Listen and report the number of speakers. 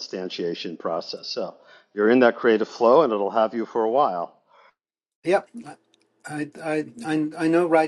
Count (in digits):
2